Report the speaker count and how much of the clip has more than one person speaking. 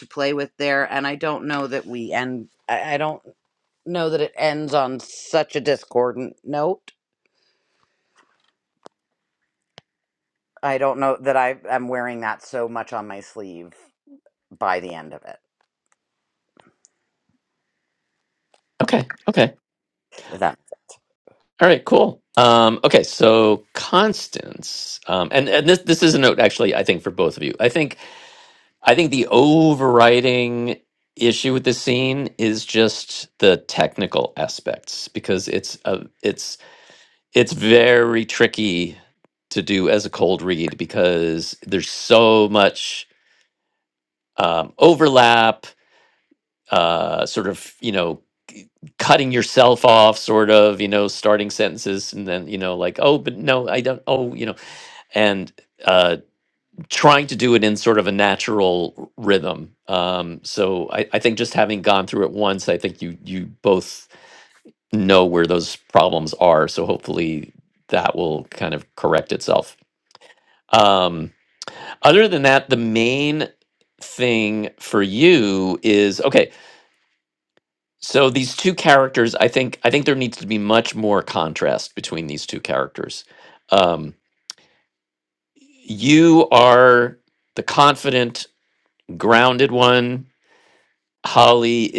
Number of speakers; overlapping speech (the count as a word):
two, no overlap